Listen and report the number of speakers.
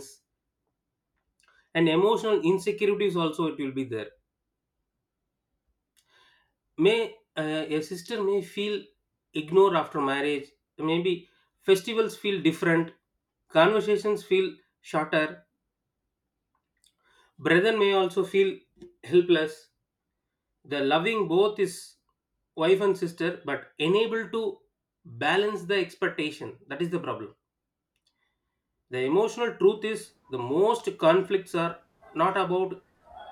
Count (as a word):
one